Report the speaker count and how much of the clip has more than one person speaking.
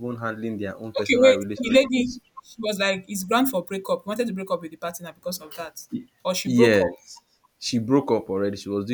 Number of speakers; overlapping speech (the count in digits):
2, about 15%